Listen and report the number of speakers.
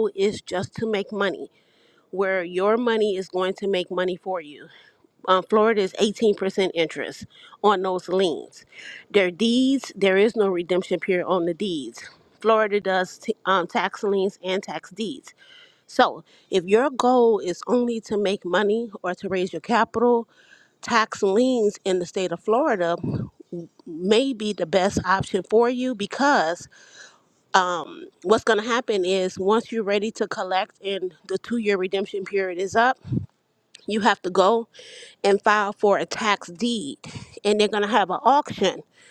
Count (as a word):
one